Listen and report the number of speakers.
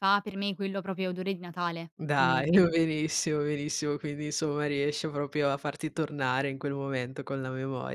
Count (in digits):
2